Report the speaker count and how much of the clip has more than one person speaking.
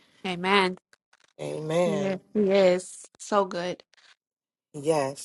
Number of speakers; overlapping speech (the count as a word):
two, about 6%